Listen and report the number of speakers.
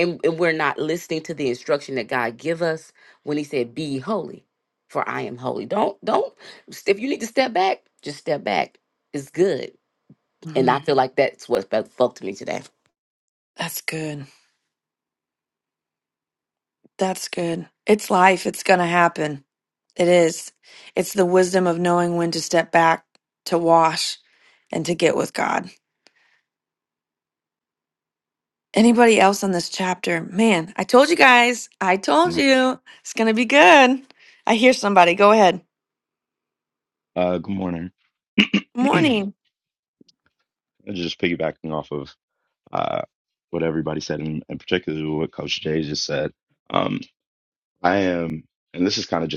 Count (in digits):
3